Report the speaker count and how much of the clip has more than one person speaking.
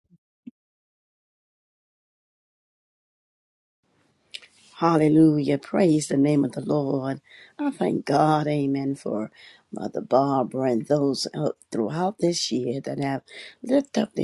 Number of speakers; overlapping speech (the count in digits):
1, no overlap